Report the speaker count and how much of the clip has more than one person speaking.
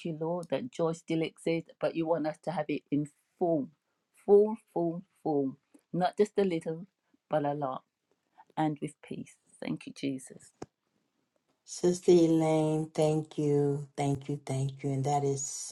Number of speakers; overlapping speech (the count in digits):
2, no overlap